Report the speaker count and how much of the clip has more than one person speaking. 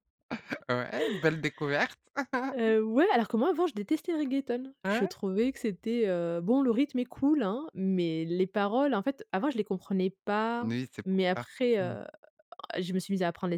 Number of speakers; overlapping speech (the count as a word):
two, about 5%